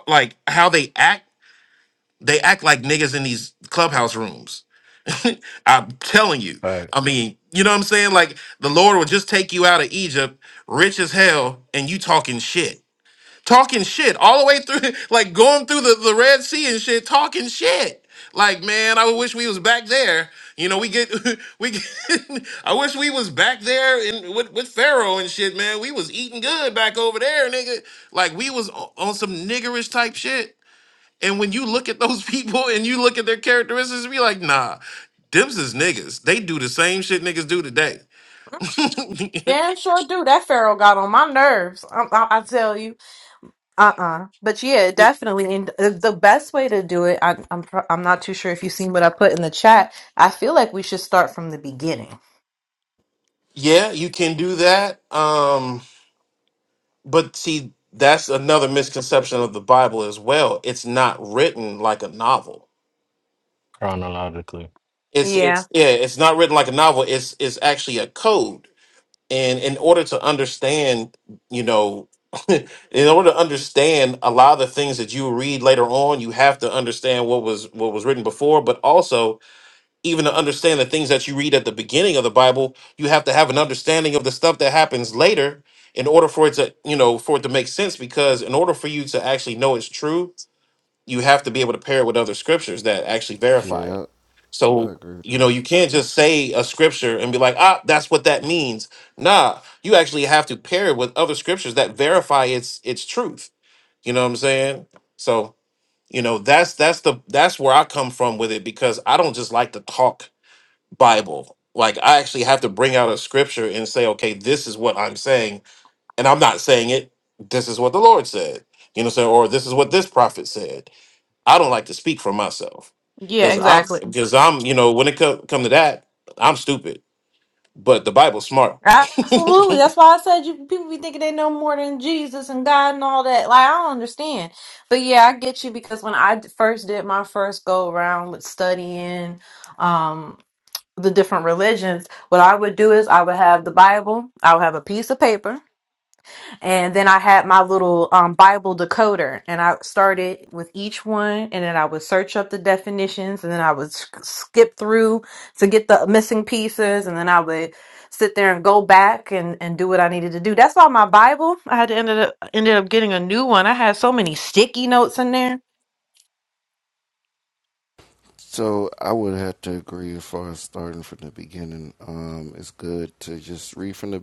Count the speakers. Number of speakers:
4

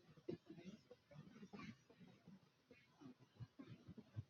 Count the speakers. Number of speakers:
0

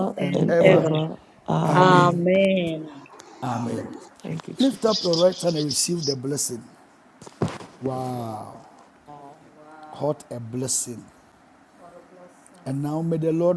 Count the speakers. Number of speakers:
3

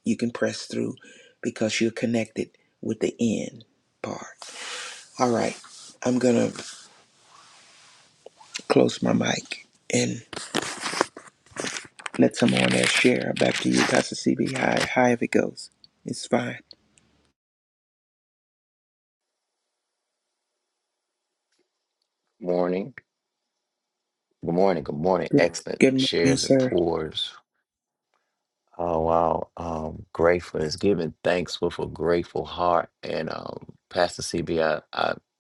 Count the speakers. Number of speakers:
2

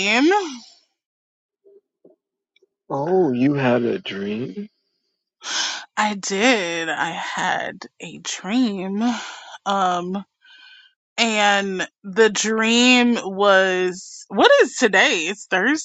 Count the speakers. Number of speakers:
2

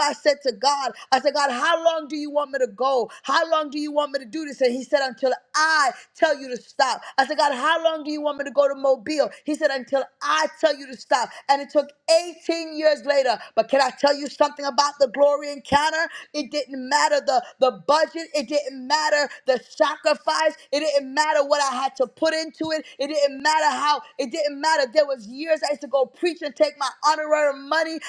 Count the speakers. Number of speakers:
1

